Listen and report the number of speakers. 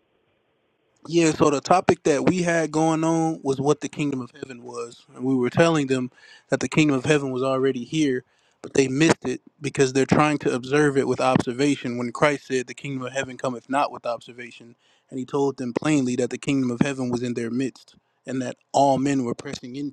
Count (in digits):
1